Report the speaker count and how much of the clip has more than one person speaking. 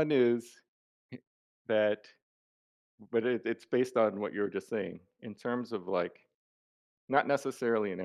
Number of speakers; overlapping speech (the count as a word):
one, no overlap